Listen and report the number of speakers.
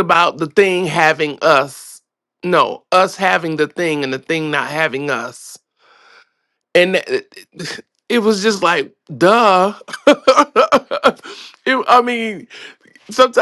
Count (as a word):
one